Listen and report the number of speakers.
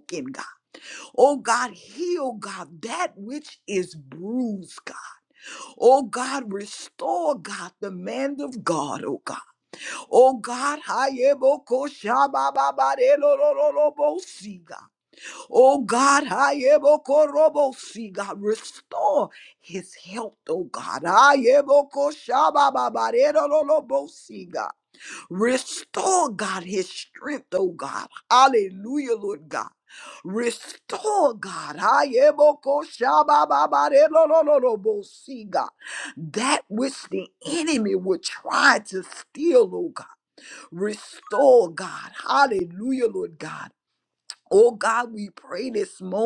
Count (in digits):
1